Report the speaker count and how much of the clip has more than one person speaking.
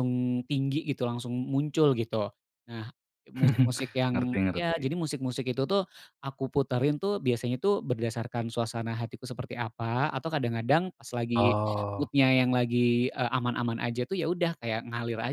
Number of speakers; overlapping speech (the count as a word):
two, about 7%